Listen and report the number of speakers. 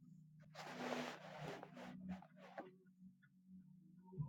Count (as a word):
zero